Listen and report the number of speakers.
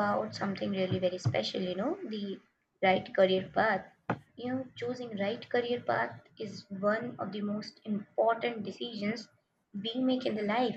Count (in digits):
1